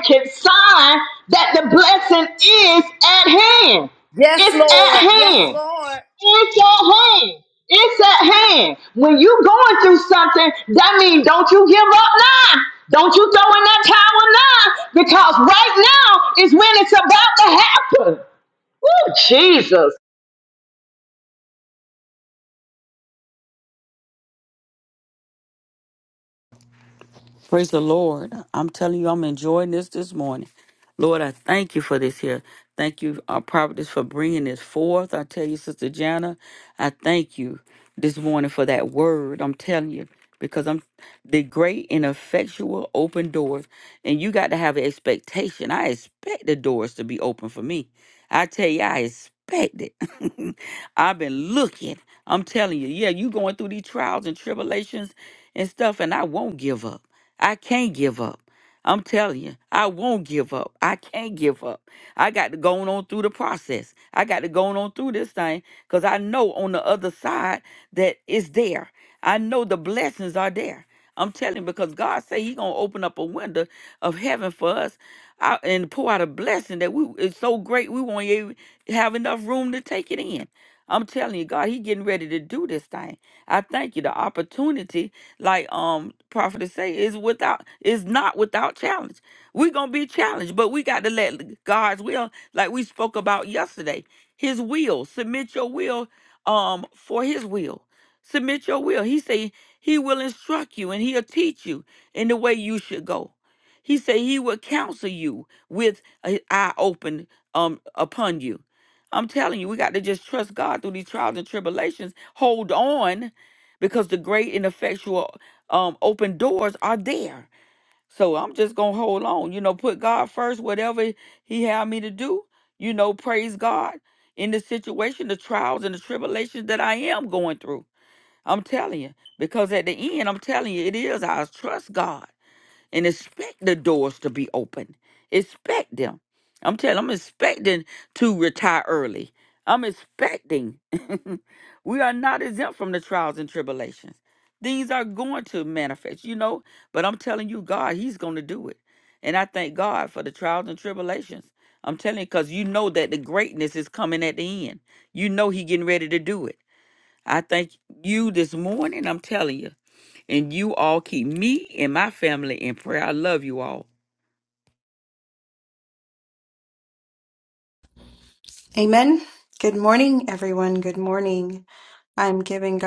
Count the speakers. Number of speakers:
4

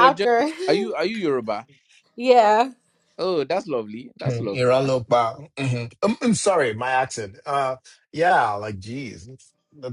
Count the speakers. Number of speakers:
3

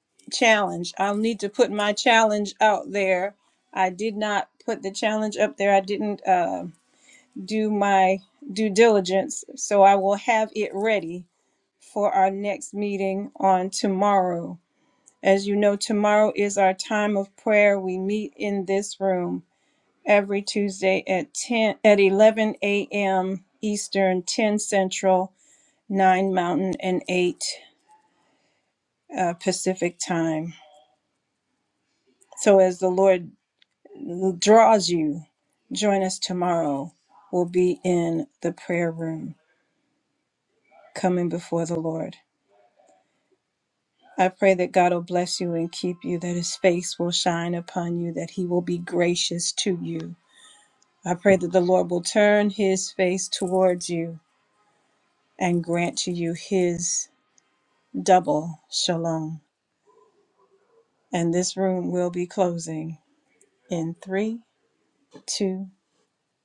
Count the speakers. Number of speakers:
1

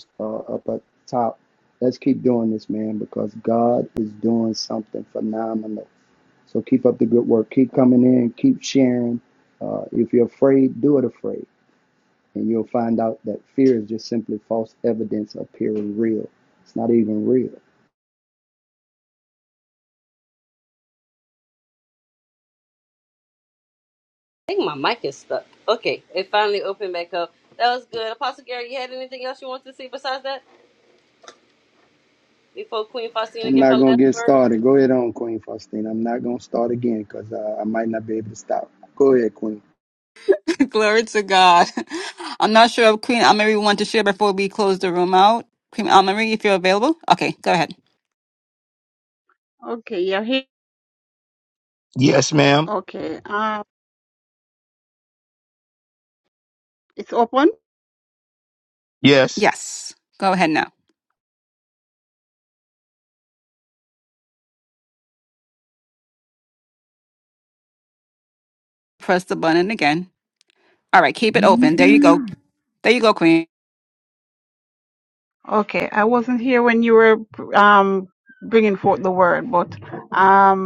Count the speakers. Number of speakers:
5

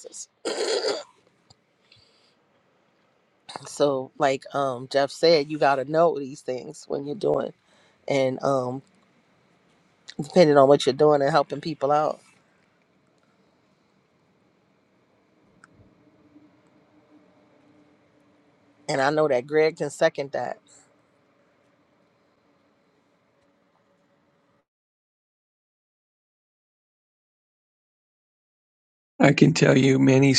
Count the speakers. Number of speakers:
2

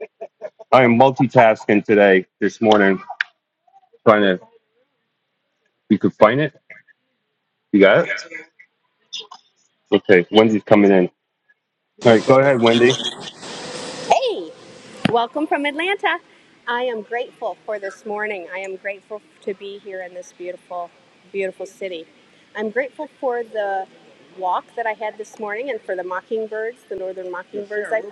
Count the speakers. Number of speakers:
2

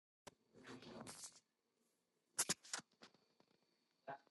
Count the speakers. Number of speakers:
0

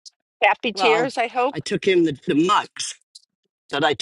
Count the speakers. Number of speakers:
2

